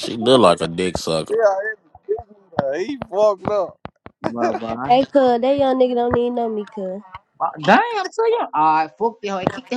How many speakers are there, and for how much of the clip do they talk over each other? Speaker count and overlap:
4, about 1%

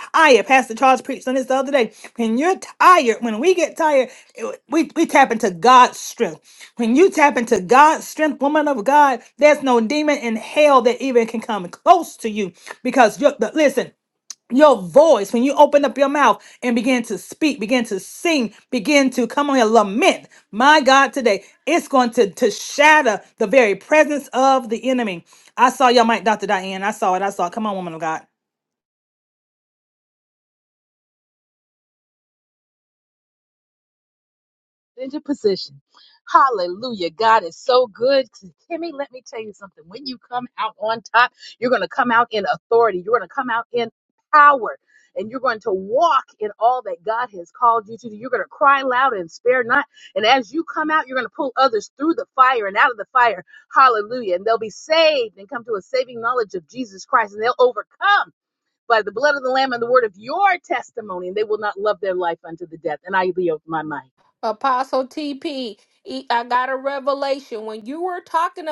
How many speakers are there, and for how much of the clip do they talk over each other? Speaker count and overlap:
3, no overlap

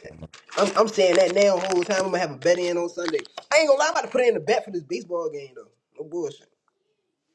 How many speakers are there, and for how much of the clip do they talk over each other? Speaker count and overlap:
1, no overlap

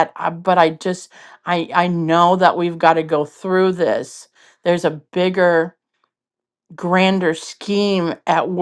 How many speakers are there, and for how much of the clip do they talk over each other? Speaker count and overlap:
1, no overlap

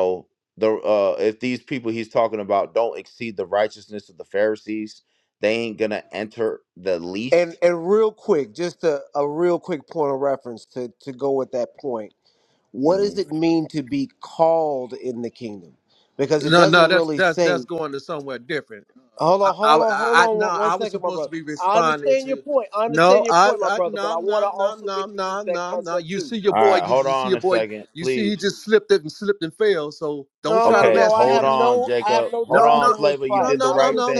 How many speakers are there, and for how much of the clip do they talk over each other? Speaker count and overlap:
3, about 37%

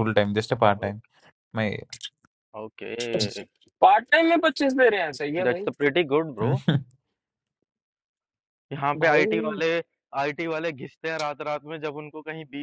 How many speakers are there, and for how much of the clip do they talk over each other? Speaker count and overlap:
3, about 7%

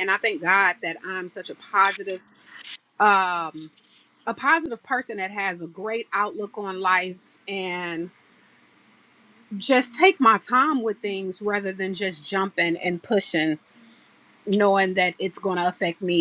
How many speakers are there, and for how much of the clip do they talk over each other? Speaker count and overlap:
1, no overlap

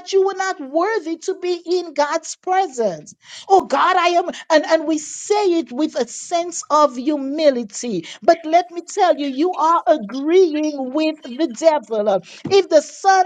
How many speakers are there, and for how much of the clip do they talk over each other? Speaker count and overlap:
1, no overlap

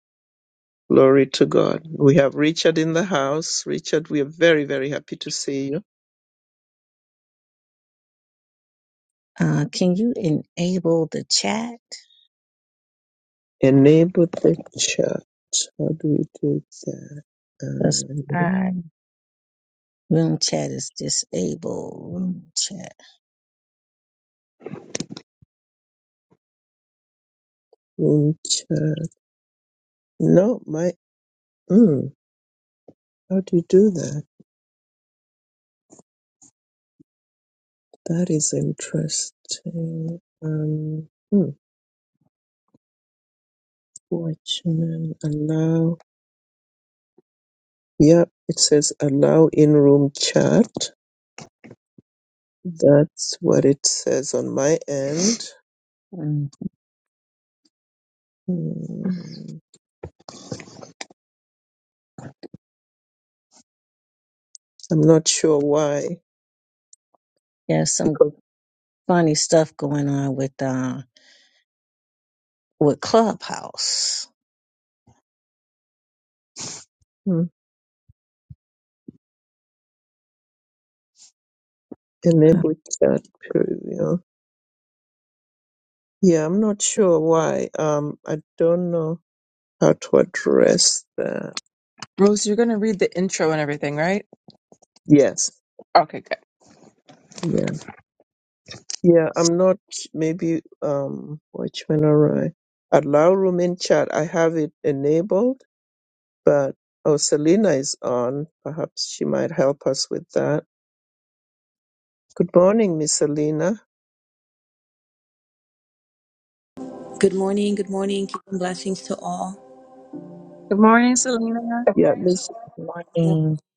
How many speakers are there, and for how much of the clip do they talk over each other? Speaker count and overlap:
4, about 1%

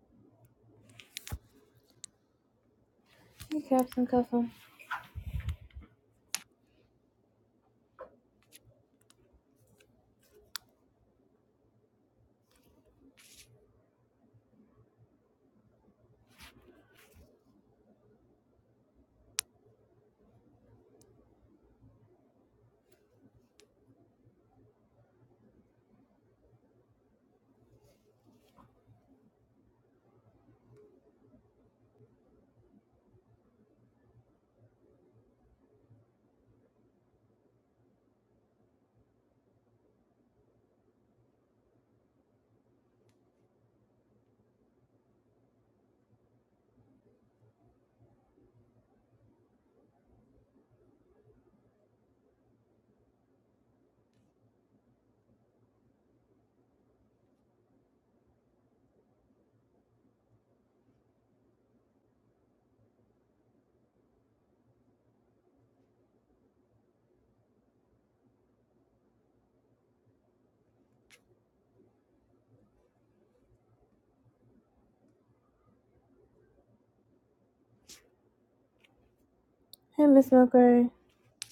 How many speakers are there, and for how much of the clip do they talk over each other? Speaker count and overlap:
1, no overlap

